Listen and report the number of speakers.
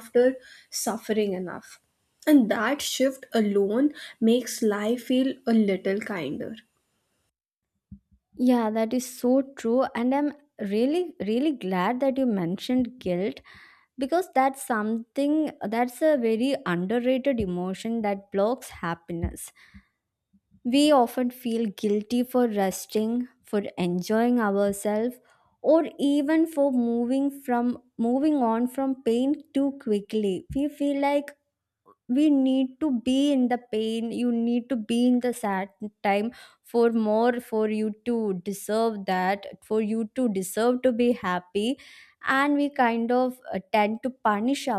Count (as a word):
two